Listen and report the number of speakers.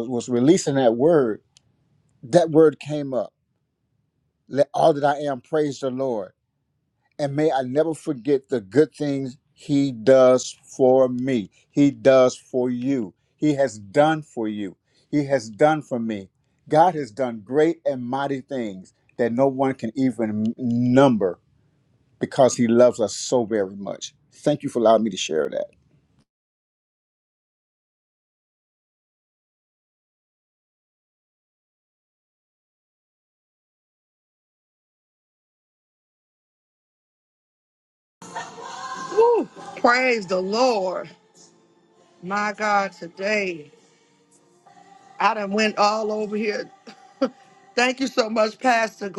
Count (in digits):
2